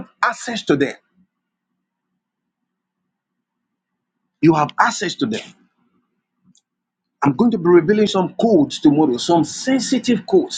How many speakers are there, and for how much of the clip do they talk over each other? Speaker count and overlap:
one, no overlap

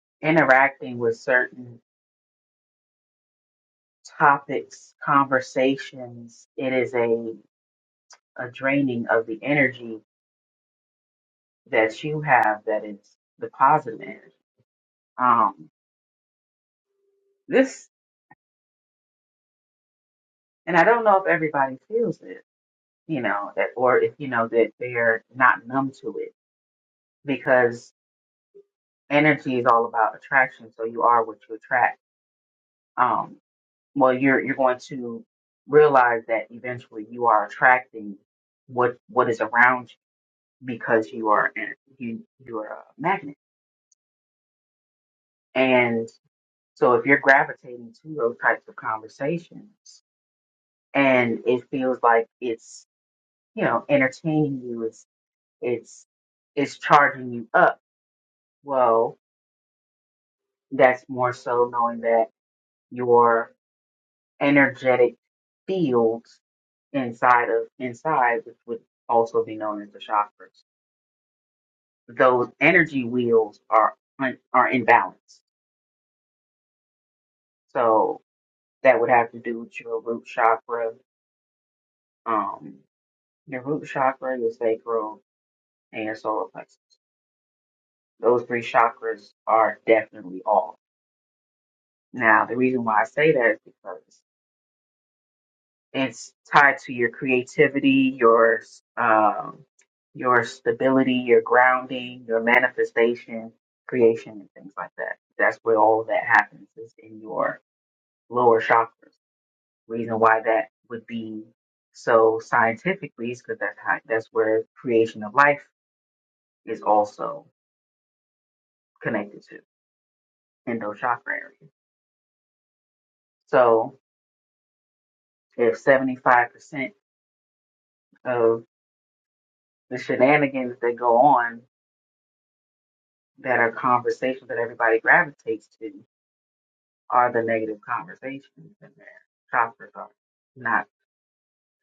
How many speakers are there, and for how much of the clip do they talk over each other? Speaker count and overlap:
one, no overlap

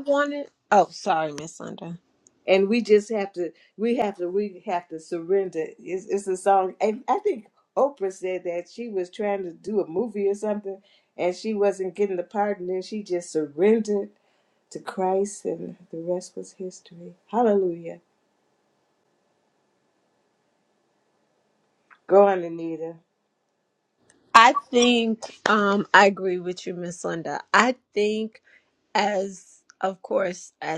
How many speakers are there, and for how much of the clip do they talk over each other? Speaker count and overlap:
two, no overlap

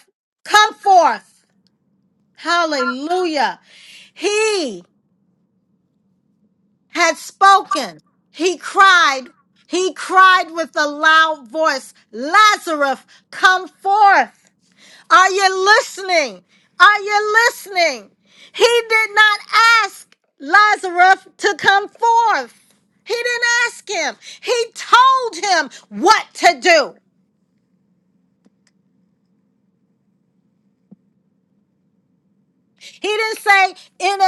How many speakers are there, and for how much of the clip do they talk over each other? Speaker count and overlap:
one, no overlap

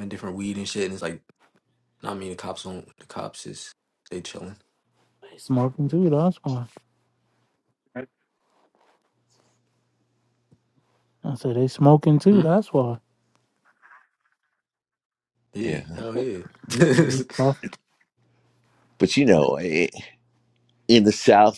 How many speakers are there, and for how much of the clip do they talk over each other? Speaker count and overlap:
three, about 2%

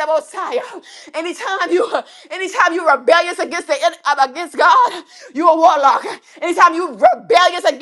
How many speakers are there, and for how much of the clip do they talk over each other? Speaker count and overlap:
one, no overlap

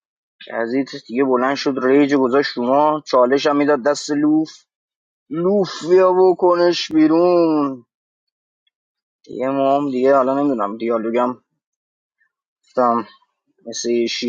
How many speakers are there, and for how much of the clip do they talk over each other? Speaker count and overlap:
one, no overlap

